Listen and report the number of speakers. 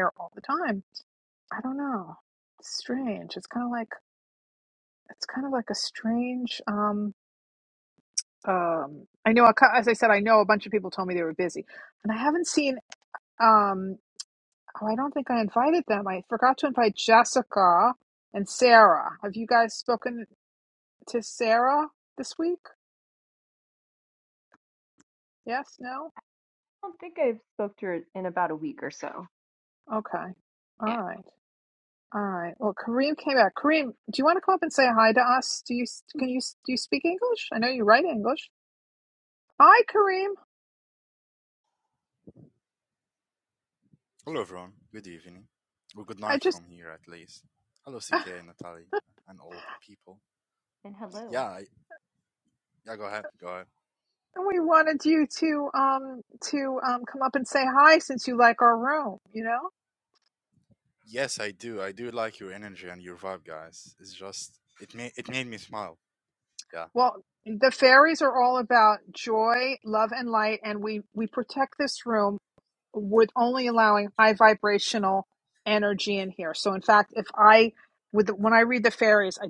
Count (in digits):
3